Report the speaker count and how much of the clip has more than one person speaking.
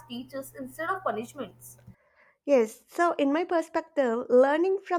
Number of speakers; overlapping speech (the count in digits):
2, no overlap